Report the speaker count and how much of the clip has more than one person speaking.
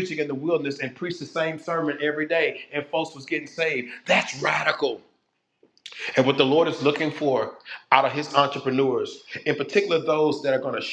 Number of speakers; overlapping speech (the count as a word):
one, no overlap